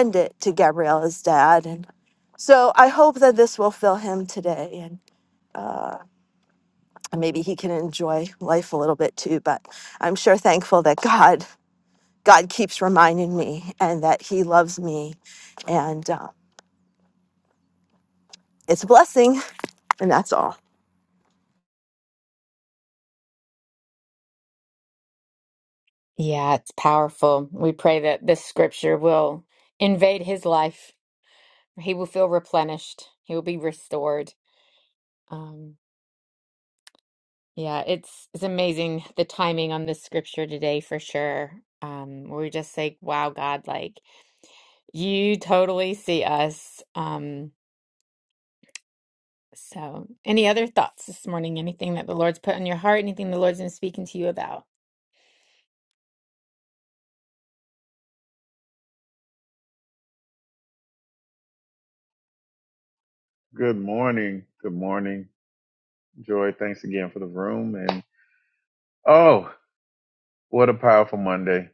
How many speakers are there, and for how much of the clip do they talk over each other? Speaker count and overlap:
3, no overlap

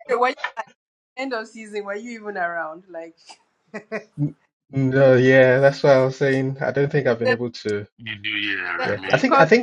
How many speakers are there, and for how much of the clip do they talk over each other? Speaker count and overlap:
3, about 9%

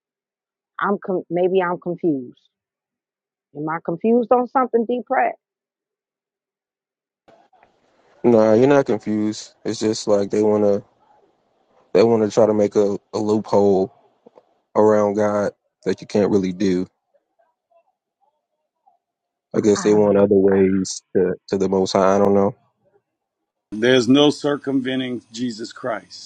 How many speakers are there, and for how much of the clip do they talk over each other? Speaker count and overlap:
3, about 1%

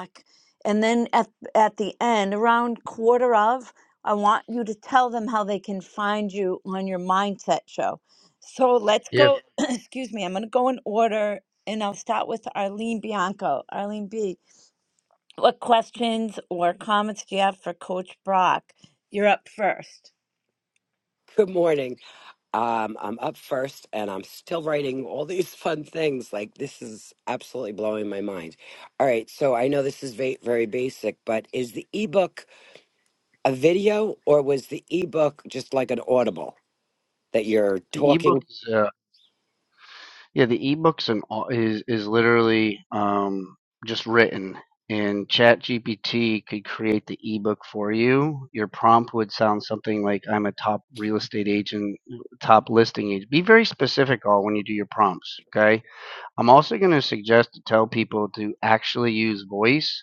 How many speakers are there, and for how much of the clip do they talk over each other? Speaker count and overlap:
3, about 1%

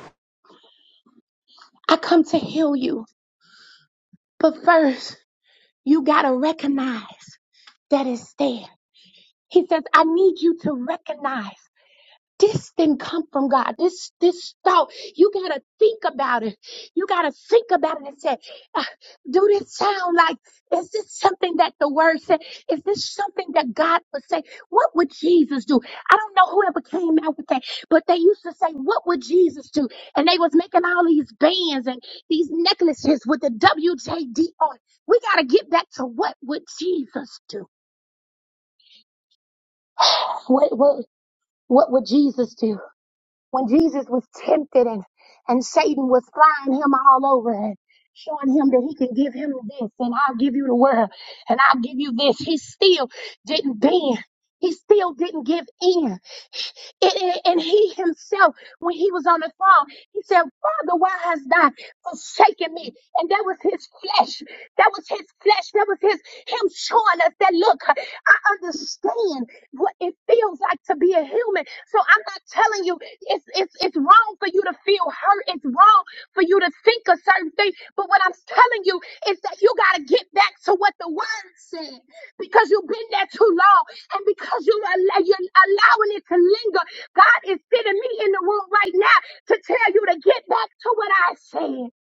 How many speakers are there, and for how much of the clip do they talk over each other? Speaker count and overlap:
1, no overlap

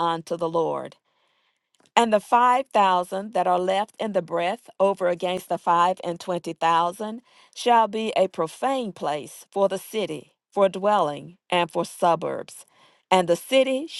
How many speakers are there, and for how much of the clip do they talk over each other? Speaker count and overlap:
1, no overlap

